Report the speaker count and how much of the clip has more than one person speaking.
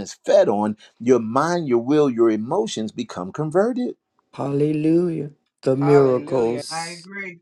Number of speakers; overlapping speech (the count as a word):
three, about 11%